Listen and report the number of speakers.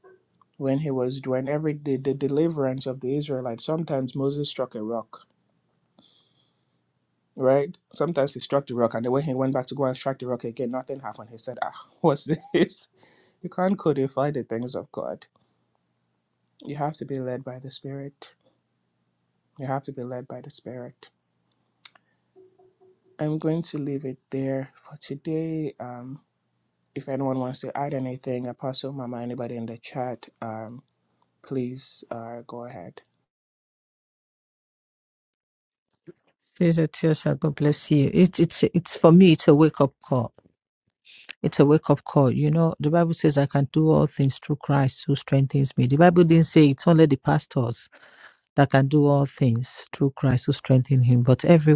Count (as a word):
two